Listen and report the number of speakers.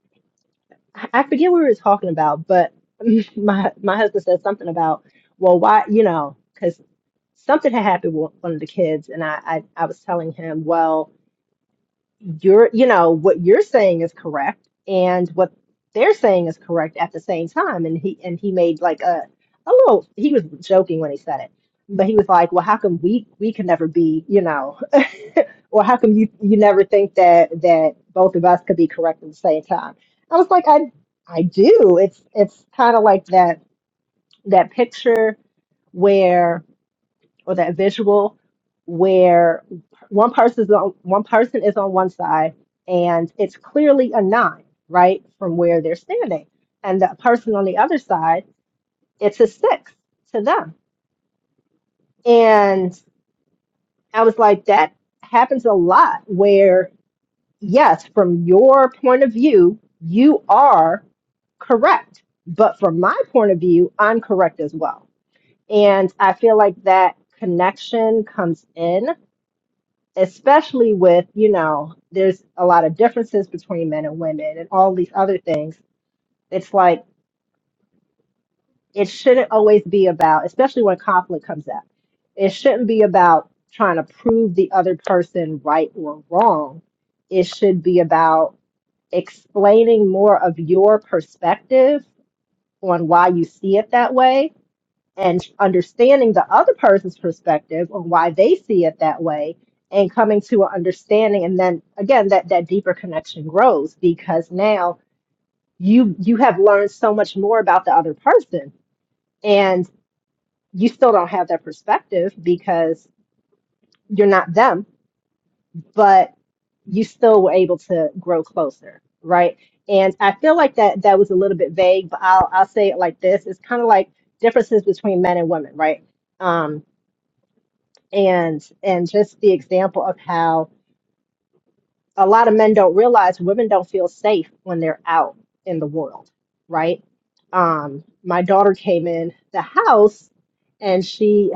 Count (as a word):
one